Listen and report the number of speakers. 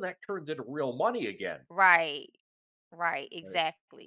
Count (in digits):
2